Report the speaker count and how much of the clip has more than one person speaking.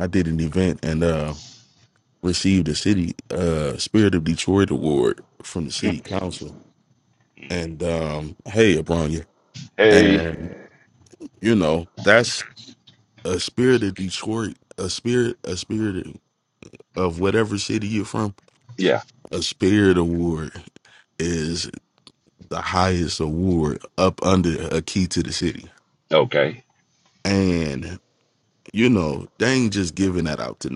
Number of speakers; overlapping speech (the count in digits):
2, no overlap